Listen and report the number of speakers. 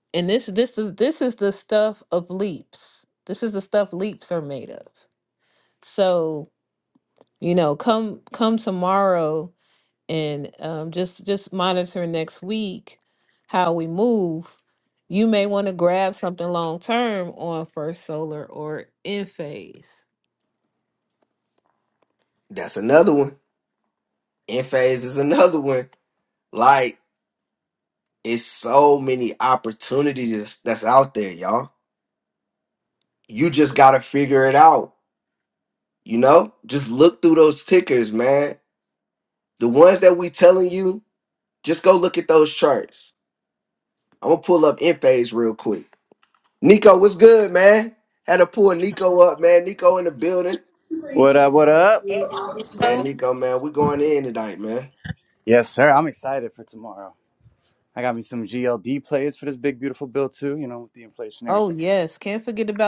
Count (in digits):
3